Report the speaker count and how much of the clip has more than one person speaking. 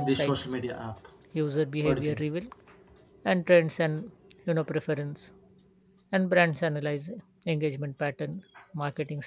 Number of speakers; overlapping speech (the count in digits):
2, about 8%